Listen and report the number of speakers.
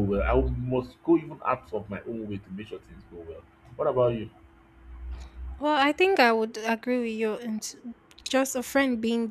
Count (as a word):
two